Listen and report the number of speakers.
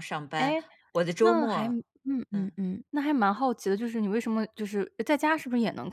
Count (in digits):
2